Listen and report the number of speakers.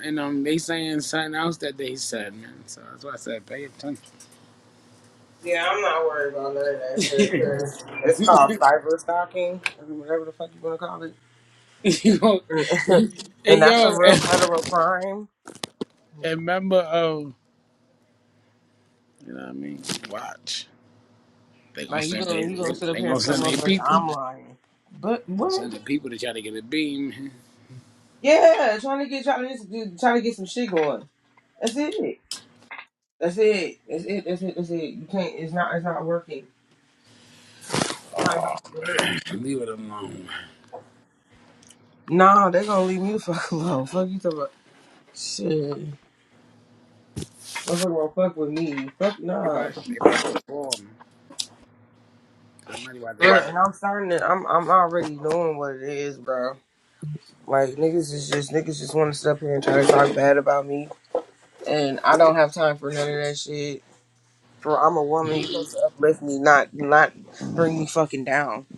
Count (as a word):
two